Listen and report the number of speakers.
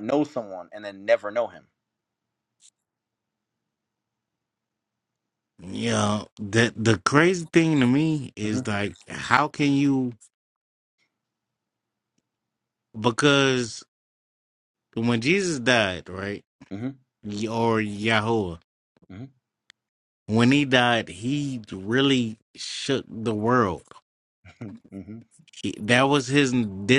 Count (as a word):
two